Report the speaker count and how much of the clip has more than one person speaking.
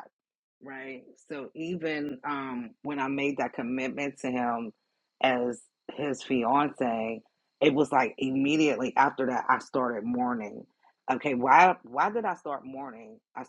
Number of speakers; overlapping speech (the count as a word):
one, no overlap